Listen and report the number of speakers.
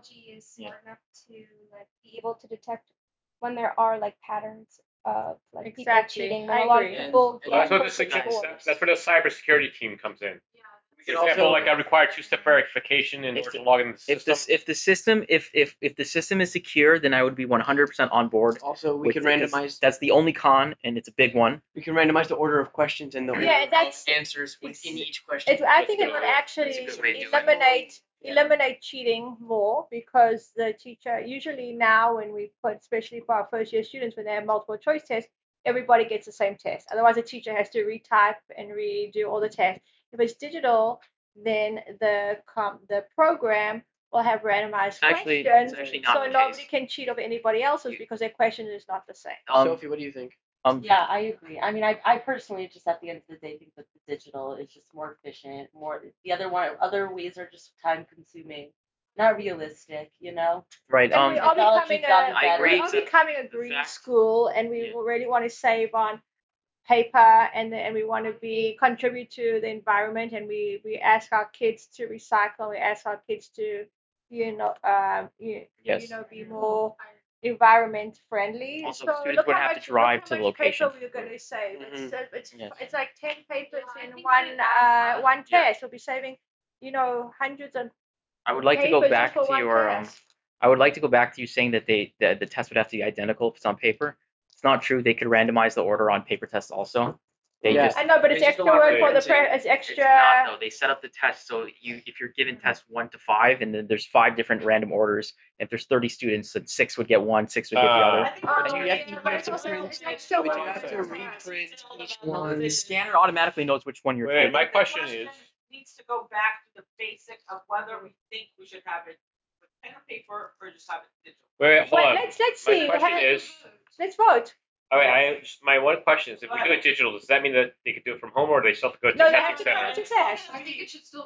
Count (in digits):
8